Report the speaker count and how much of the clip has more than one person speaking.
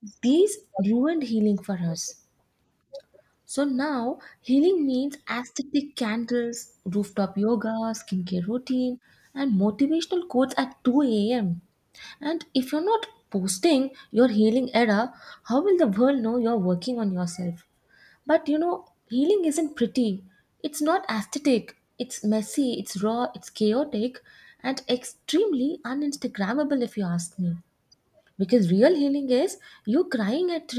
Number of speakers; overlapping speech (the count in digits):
1, no overlap